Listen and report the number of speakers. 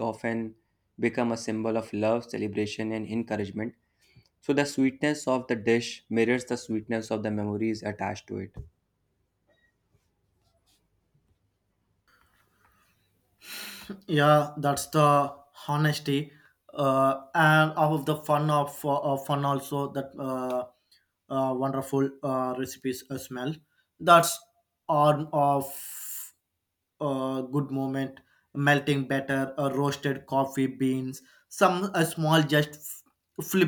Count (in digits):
2